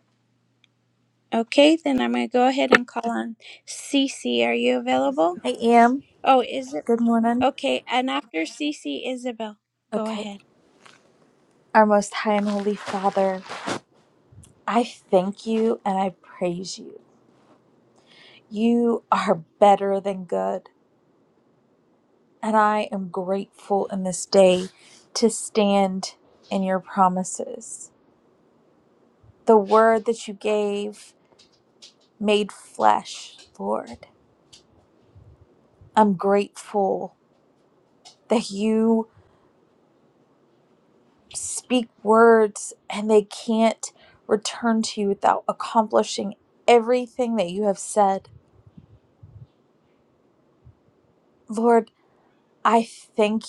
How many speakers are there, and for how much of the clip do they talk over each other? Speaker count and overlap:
two, about 1%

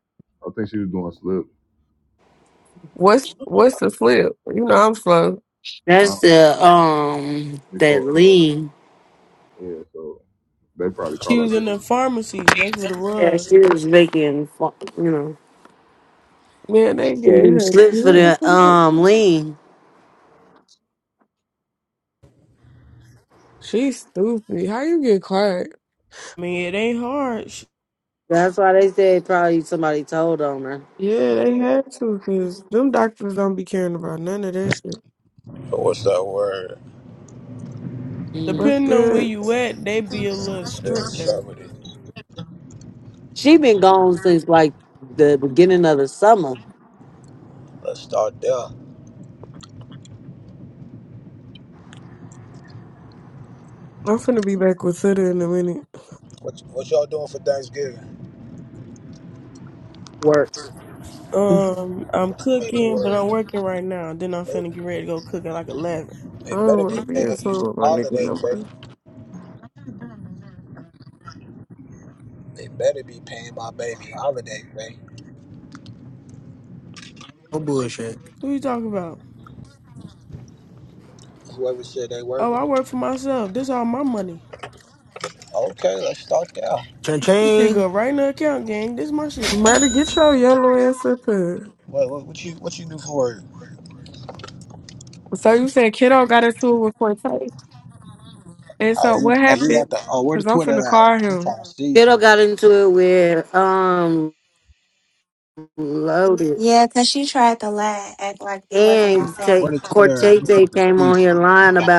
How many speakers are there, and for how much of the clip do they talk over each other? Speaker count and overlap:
seven, about 12%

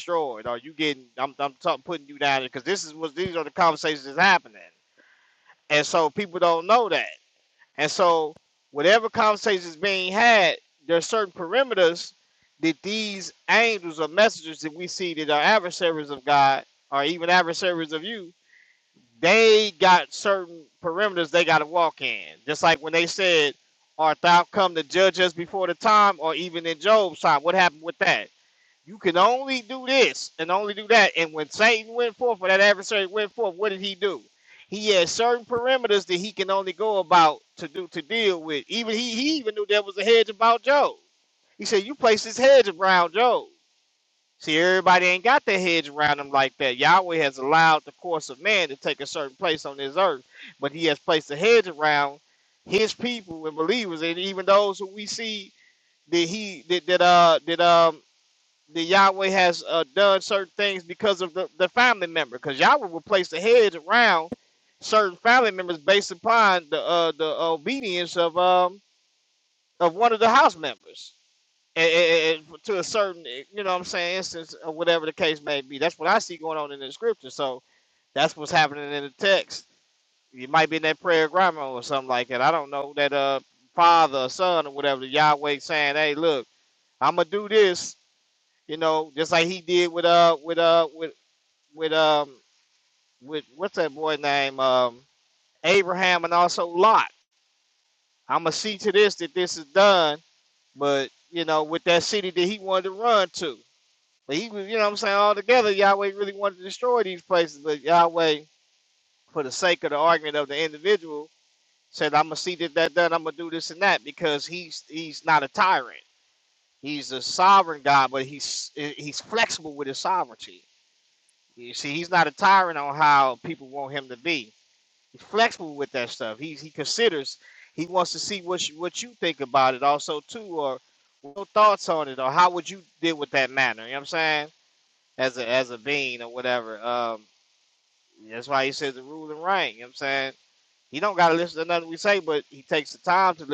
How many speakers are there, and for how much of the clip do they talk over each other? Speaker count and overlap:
one, no overlap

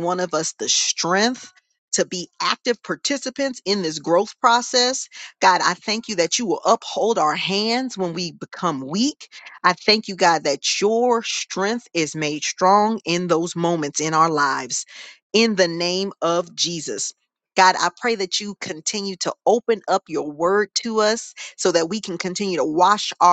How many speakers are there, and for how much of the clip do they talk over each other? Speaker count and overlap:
one, no overlap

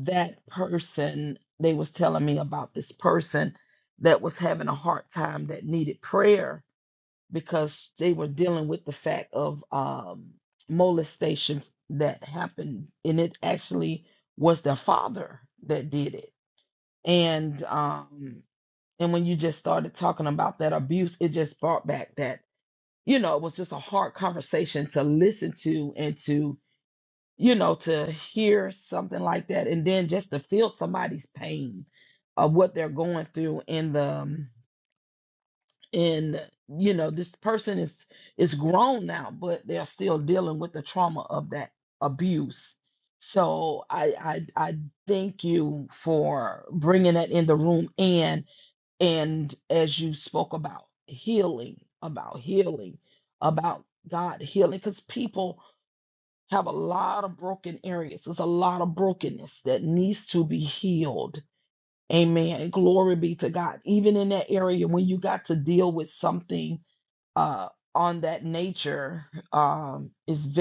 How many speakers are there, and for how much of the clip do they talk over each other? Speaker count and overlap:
one, no overlap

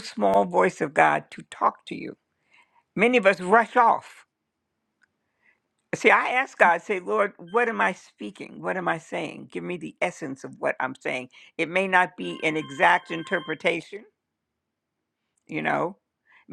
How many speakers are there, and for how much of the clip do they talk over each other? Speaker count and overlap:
one, no overlap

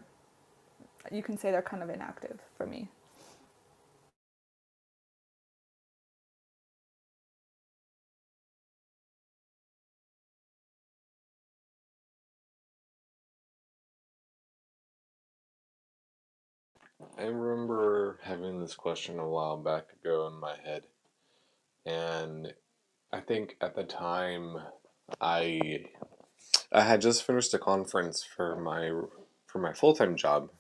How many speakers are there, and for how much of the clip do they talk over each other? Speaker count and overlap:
two, no overlap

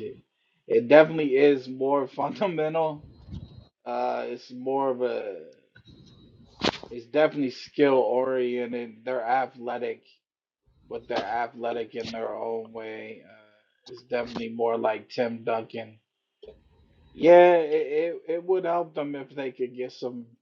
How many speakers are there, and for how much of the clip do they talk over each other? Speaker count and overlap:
one, no overlap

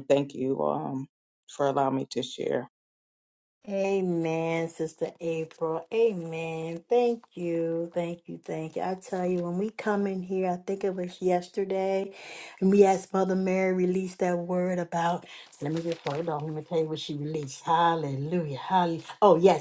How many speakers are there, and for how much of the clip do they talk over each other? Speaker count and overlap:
two, no overlap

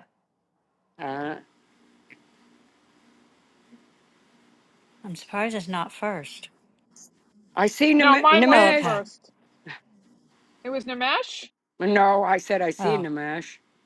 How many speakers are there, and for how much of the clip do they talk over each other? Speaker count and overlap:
three, about 9%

